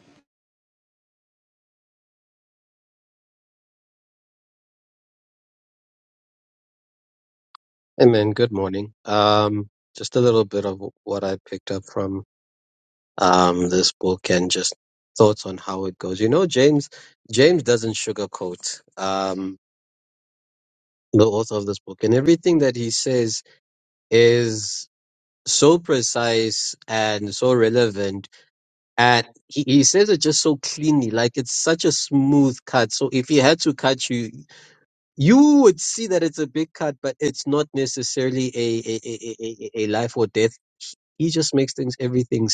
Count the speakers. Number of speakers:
one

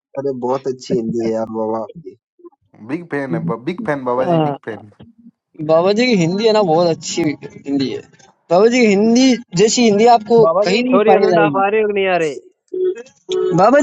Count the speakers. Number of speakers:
four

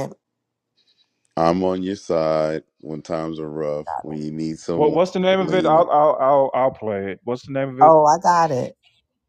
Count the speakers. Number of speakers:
three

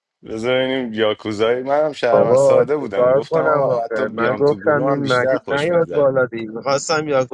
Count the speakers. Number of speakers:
two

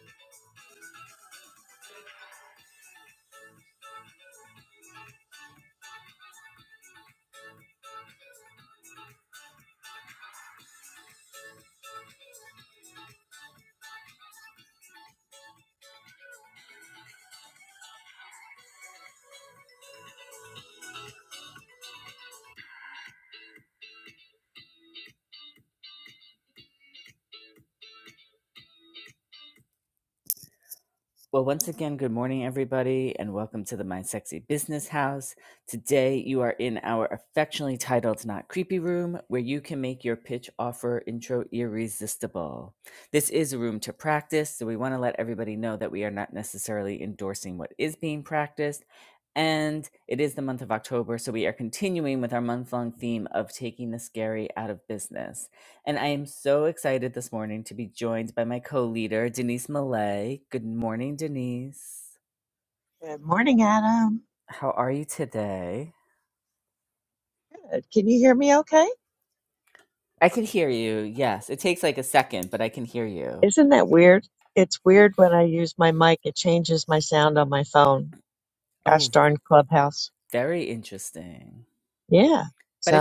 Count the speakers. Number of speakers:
two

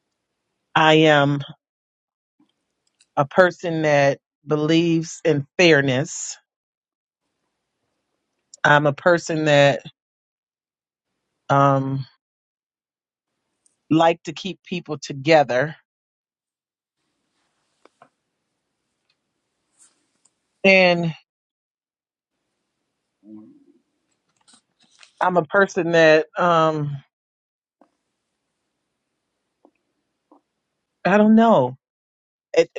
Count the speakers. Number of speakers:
one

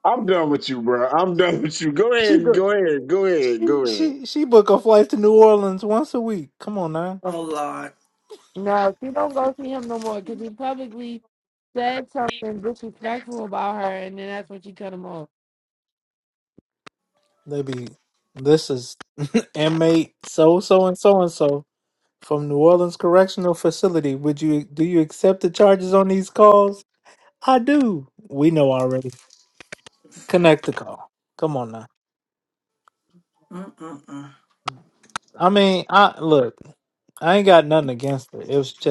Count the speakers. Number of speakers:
four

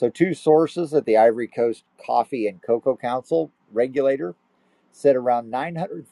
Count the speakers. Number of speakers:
one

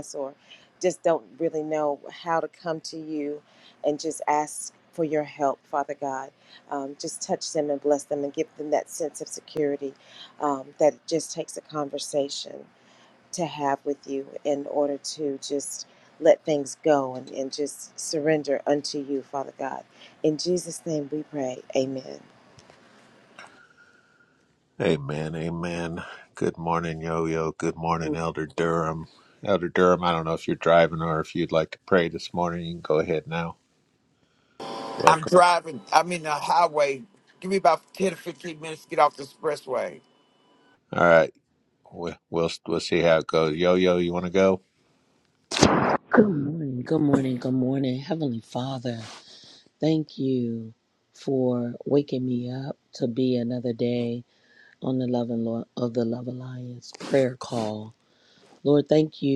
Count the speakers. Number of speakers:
four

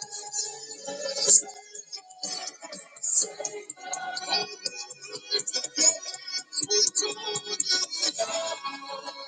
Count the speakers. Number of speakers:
zero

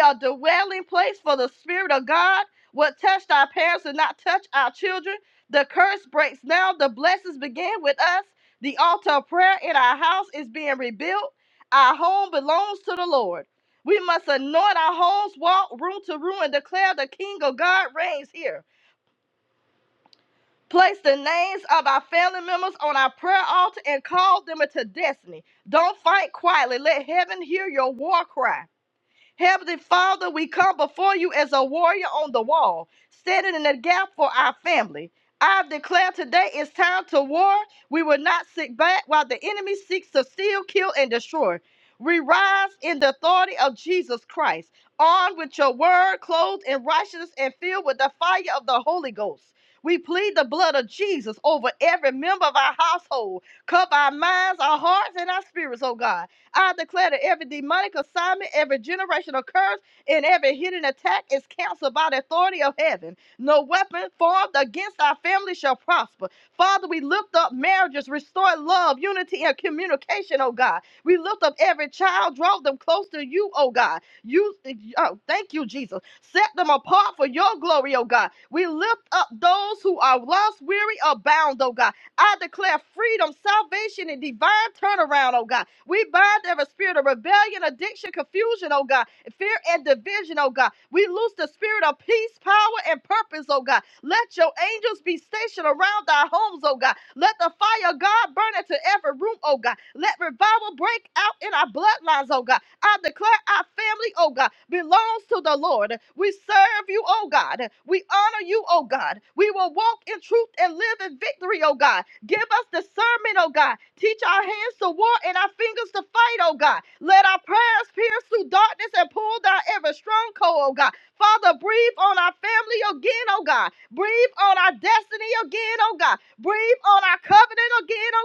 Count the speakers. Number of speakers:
one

